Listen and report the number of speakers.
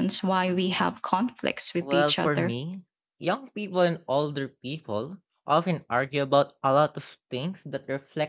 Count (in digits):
2